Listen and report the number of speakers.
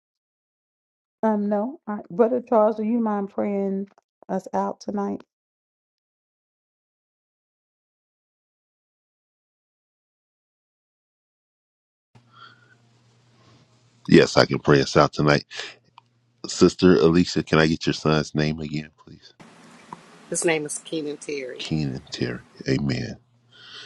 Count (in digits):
3